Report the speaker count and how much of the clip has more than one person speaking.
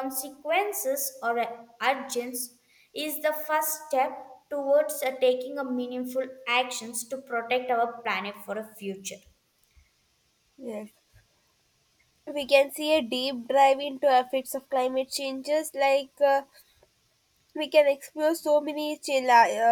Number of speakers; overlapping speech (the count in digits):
2, no overlap